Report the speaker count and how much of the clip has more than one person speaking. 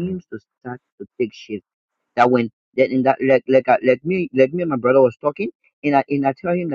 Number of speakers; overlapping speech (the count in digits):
1, no overlap